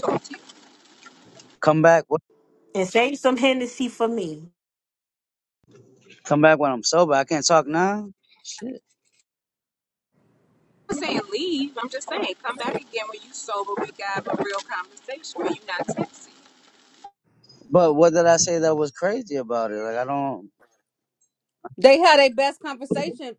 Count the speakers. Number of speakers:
4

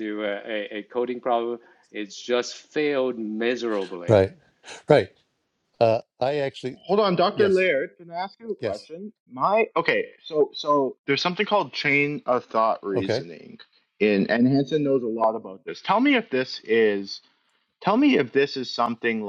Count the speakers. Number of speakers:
3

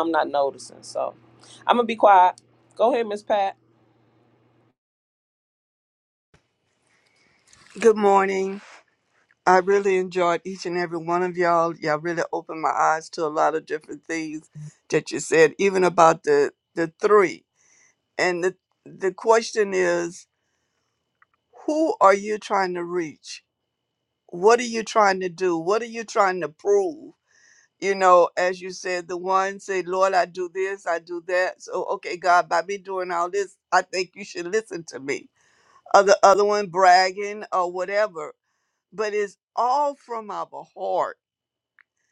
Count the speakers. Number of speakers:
2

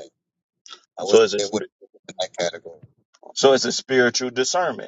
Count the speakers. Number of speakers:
2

